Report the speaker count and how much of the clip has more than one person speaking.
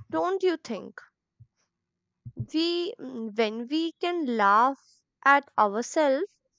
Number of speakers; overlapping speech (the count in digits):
1, no overlap